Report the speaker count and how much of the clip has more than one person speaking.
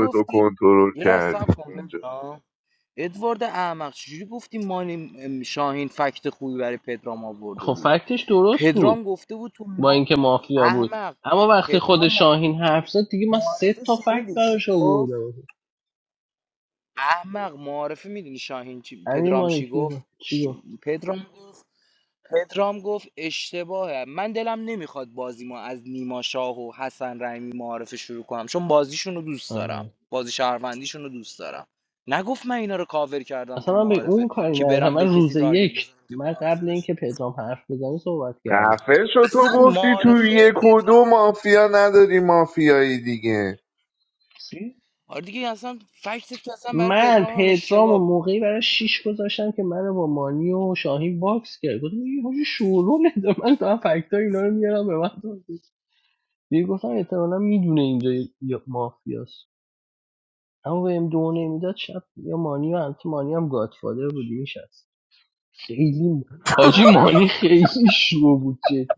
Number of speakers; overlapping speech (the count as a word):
three, about 18%